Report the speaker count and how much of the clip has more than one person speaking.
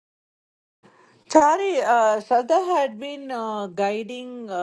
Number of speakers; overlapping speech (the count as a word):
one, no overlap